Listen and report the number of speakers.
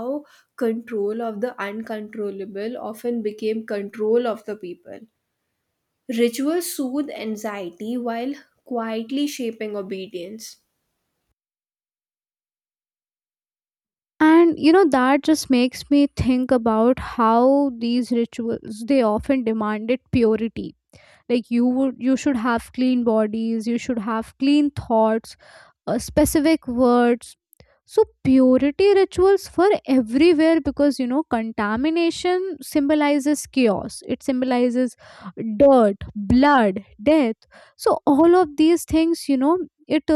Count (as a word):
two